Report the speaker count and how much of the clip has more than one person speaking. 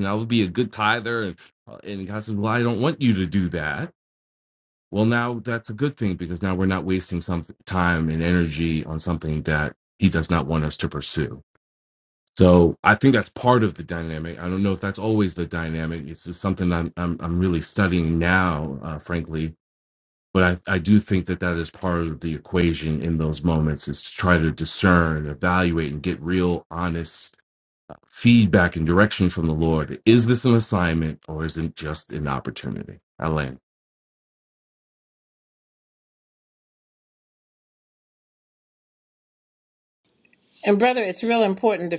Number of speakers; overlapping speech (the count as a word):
two, no overlap